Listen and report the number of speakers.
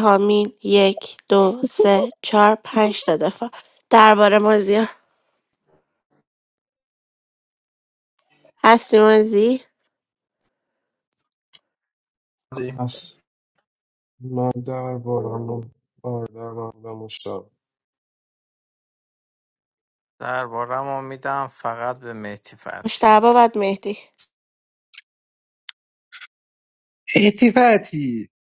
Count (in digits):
4